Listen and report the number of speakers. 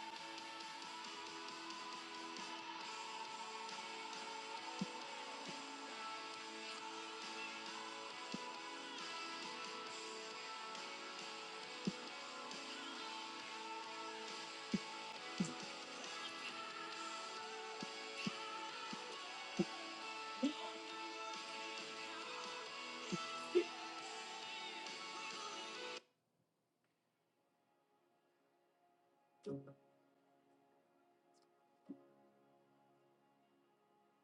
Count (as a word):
zero